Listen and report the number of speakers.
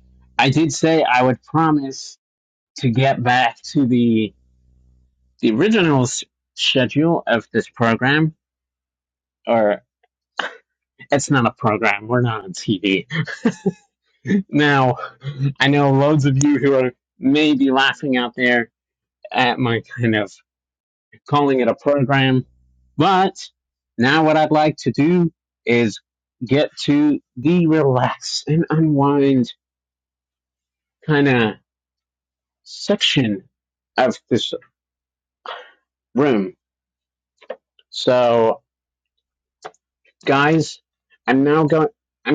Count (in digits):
1